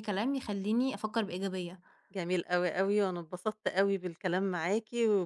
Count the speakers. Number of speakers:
two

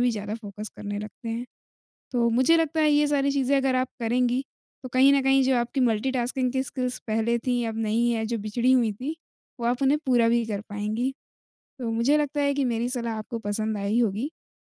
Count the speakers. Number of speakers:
one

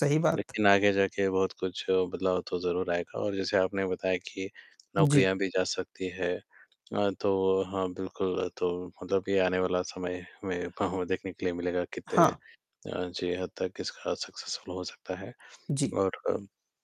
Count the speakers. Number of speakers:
two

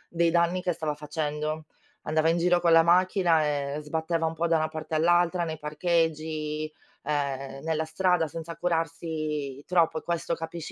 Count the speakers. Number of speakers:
one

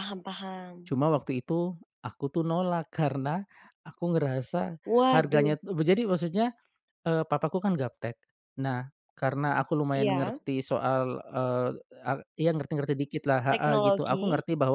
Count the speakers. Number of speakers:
two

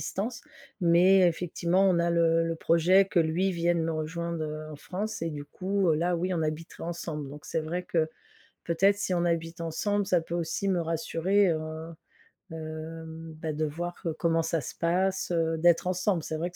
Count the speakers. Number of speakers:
one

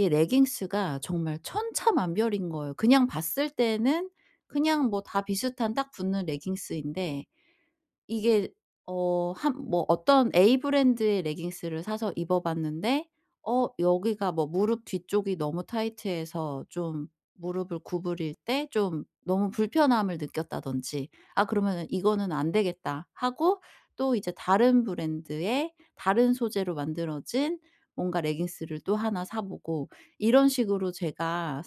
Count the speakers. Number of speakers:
one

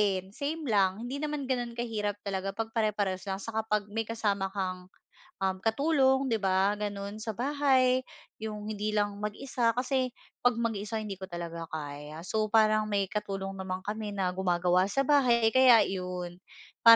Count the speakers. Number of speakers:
one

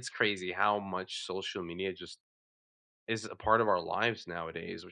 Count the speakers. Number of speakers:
one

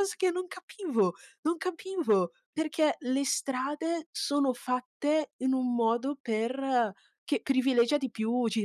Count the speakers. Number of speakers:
one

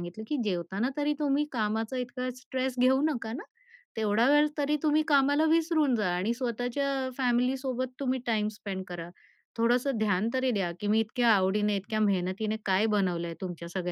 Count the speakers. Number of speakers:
one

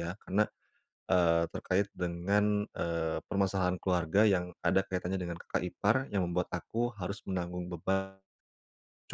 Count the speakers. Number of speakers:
one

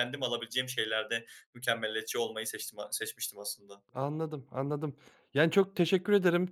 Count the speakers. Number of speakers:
two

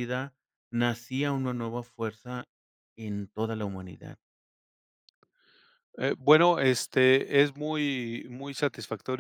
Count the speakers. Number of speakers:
two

